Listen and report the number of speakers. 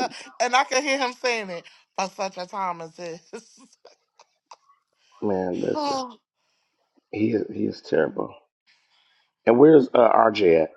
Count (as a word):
two